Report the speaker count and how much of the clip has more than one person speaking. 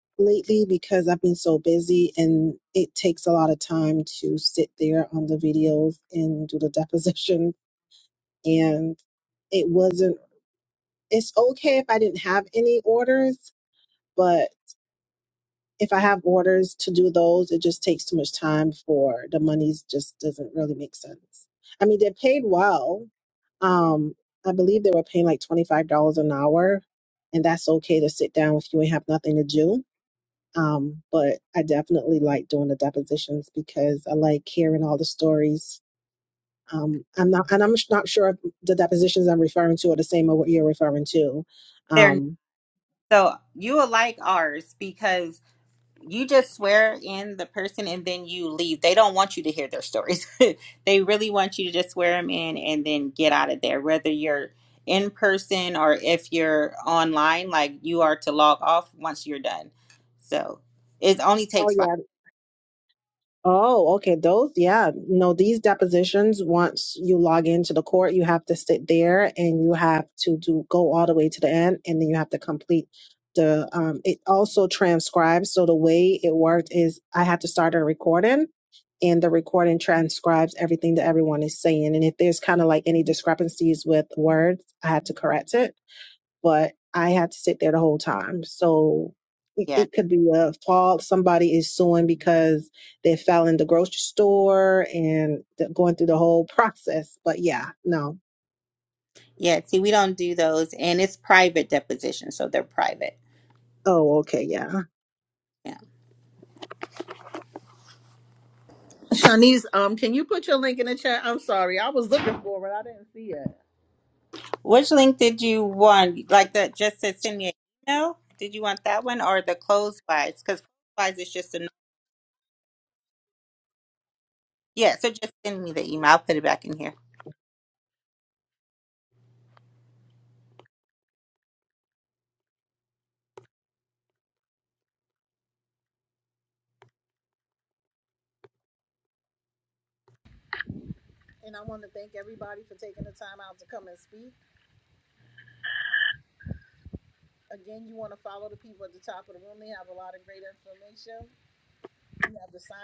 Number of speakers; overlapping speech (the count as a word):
three, under 1%